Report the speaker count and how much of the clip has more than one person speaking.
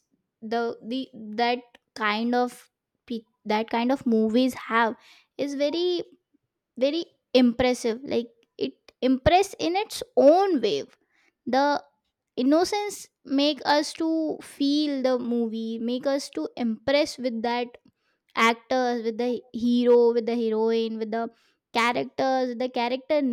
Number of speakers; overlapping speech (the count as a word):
one, no overlap